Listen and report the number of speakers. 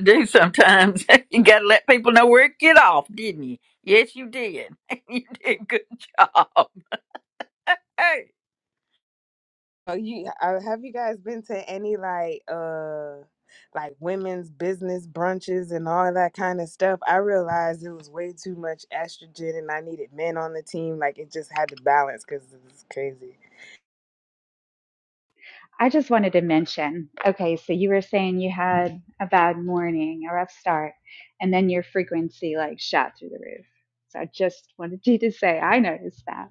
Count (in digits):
3